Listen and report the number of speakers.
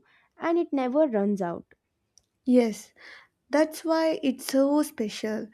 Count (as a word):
two